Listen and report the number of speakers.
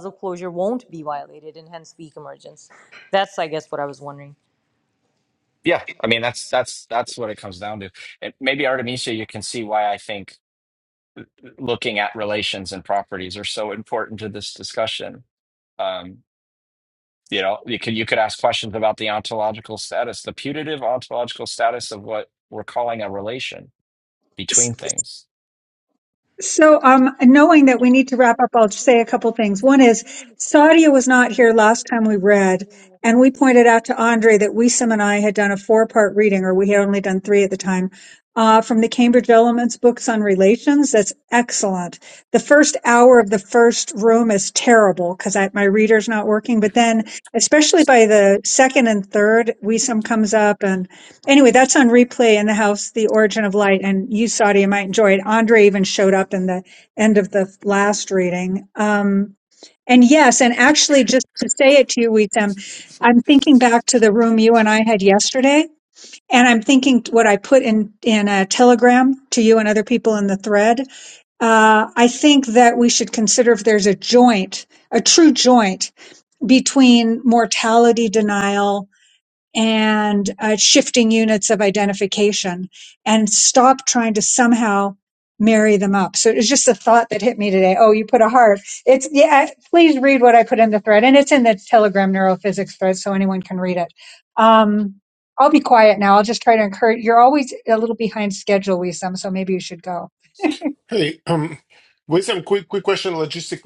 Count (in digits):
4